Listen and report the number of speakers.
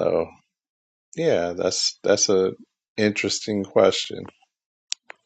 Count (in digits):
1